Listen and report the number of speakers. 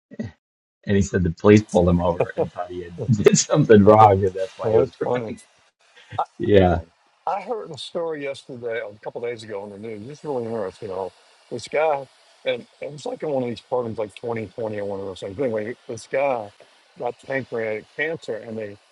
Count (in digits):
2